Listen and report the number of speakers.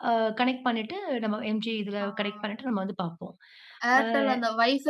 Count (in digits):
2